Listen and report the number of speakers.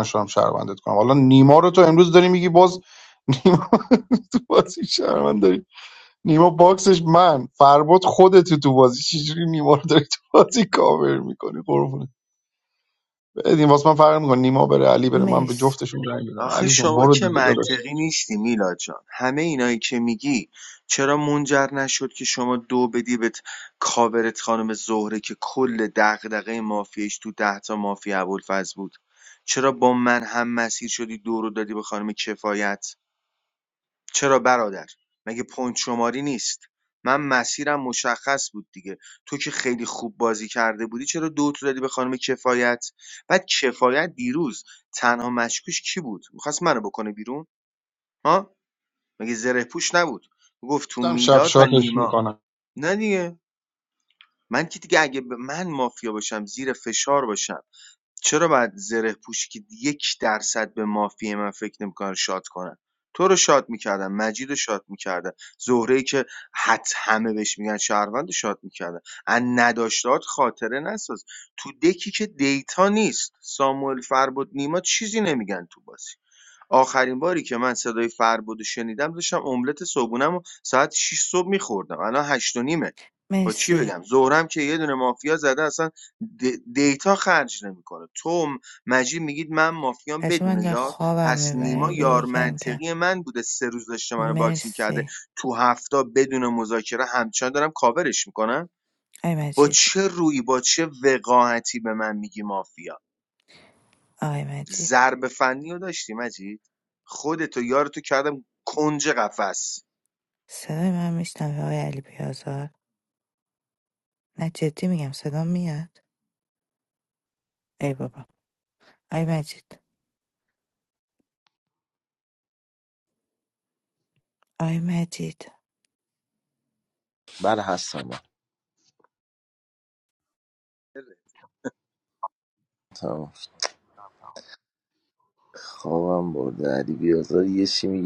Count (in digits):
4